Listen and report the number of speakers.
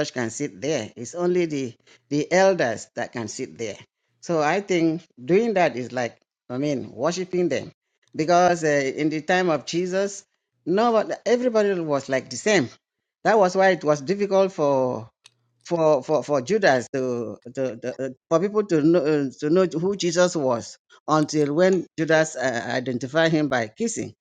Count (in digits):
1